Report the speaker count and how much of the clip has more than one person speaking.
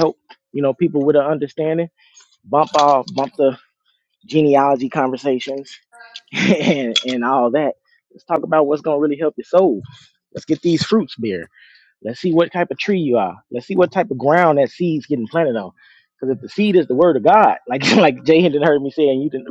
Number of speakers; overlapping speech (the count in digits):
1, no overlap